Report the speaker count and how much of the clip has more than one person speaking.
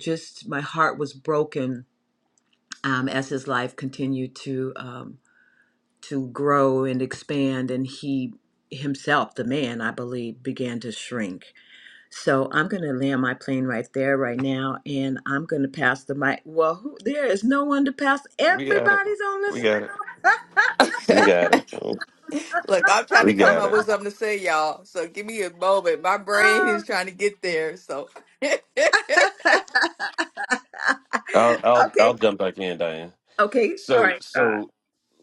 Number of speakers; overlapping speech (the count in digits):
3, about 9%